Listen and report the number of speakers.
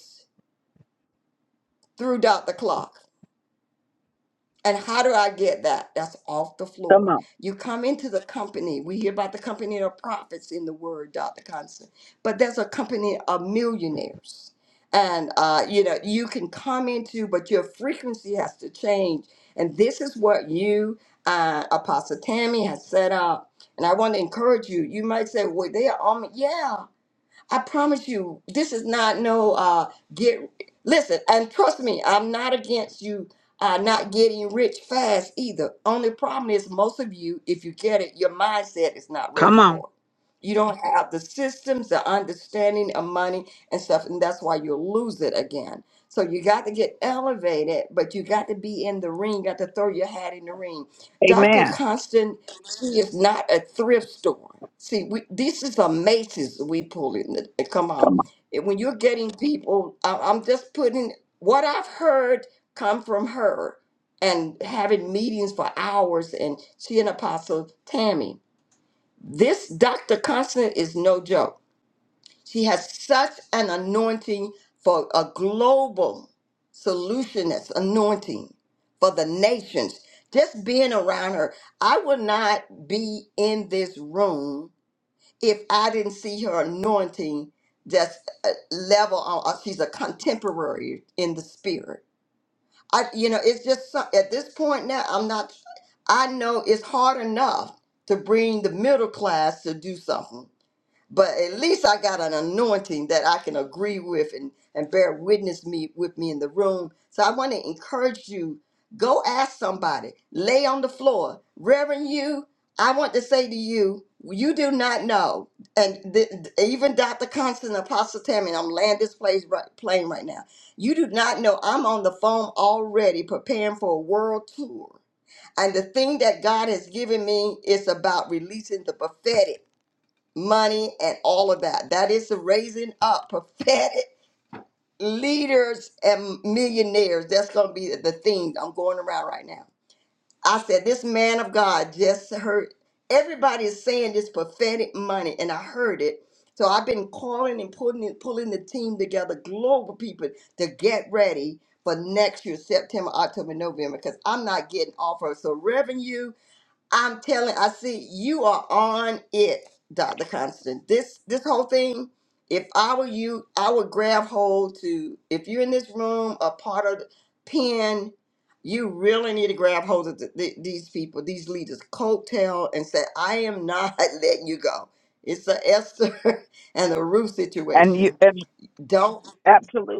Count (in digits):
2